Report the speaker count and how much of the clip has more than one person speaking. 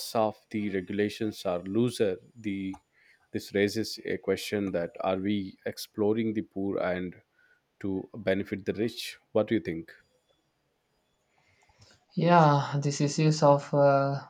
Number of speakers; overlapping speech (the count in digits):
2, no overlap